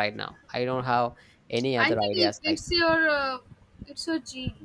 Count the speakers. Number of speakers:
two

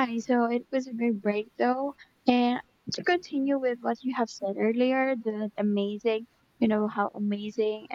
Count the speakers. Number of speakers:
one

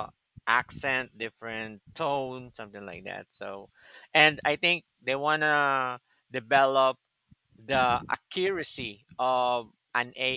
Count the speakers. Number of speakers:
one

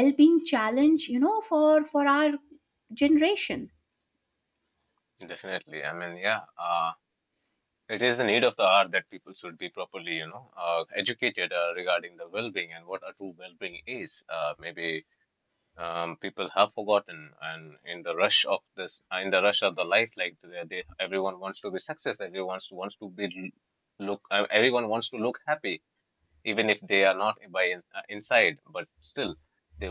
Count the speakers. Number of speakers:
two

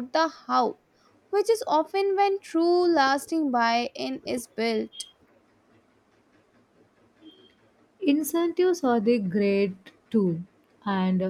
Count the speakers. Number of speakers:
two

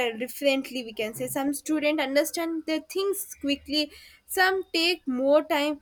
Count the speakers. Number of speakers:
one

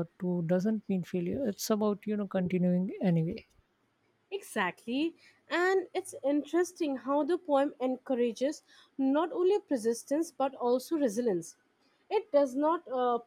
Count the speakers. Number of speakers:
two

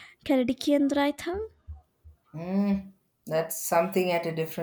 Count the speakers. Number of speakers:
two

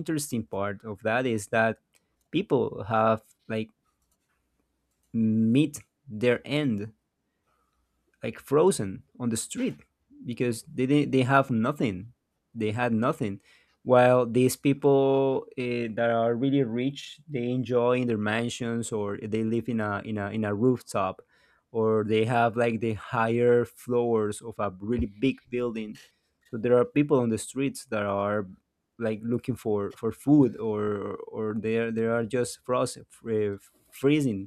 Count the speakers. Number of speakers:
one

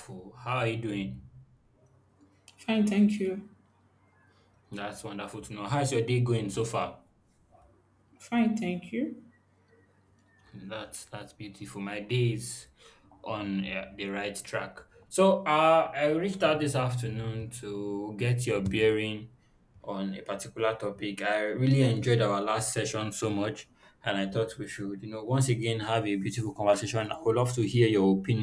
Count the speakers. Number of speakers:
two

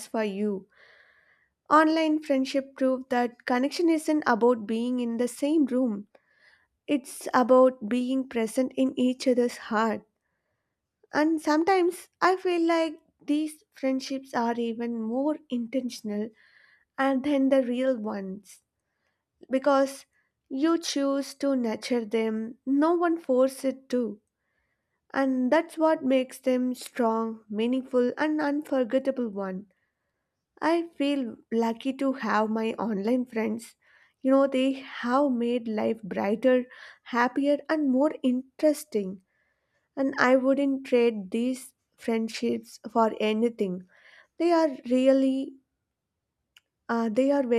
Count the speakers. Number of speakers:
one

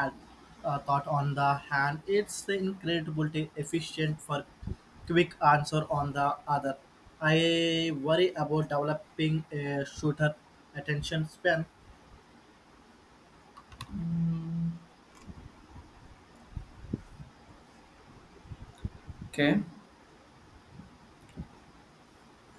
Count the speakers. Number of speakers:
two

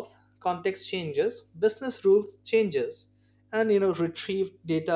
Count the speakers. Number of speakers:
one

